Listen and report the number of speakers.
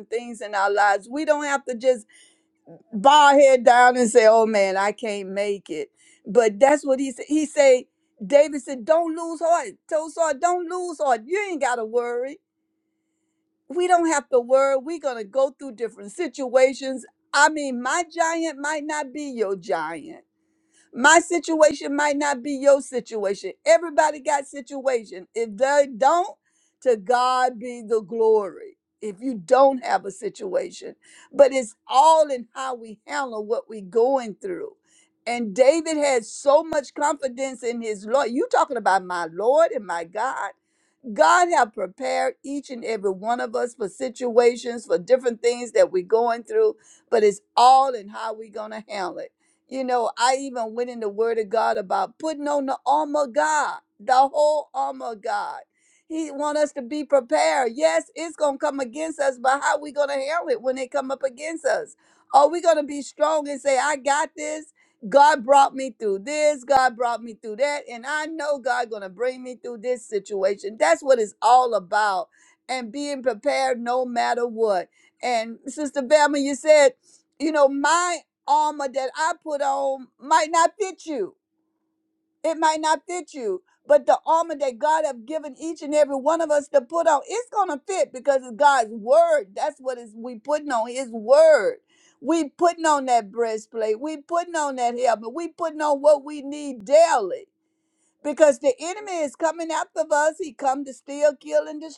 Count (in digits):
1